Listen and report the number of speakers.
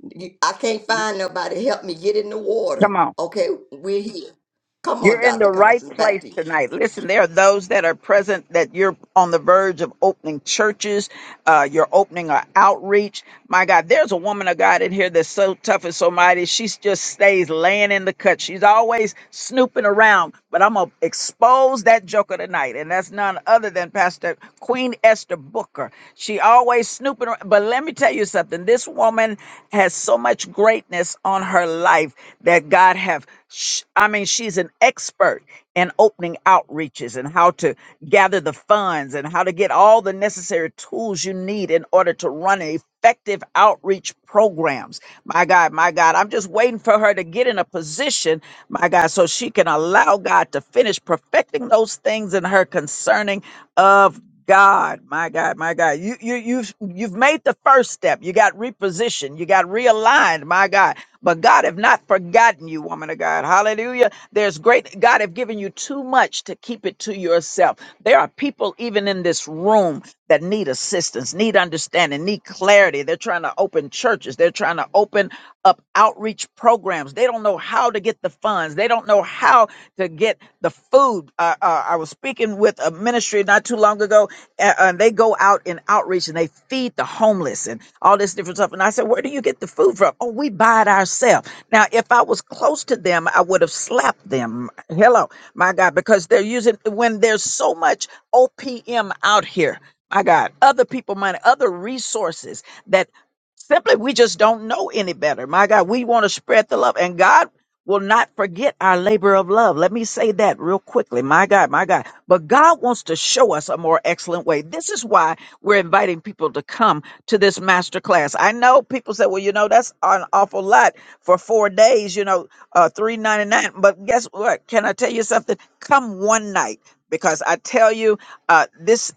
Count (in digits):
2